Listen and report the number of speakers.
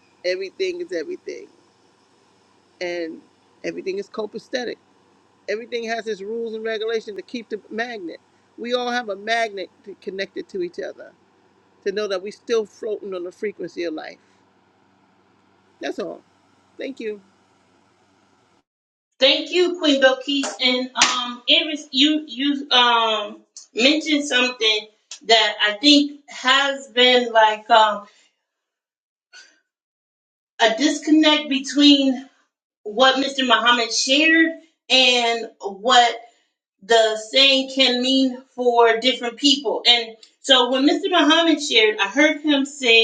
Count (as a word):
two